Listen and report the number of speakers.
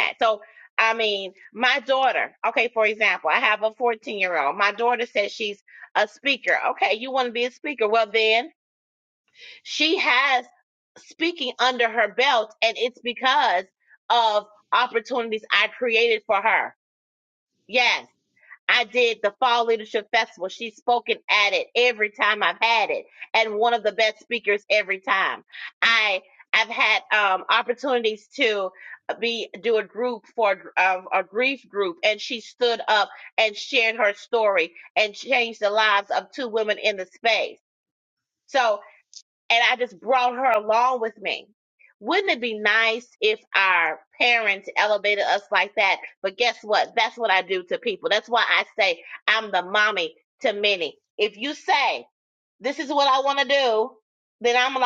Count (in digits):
1